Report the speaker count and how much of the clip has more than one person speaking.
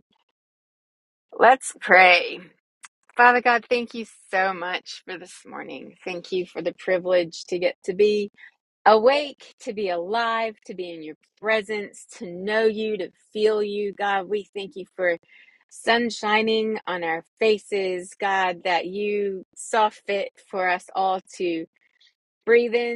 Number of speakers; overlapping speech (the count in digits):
1, no overlap